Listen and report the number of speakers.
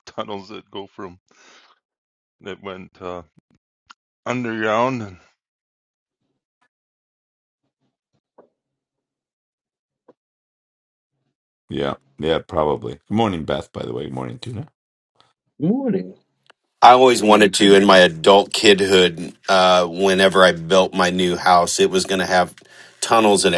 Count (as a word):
four